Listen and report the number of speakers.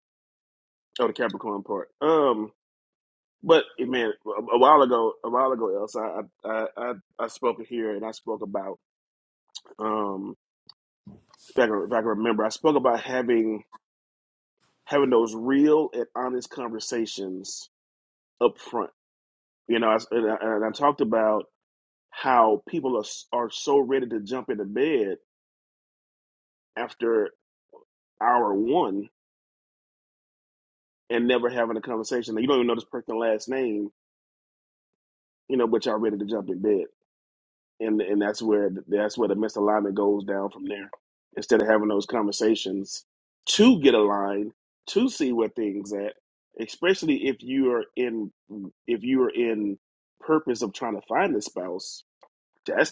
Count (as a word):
one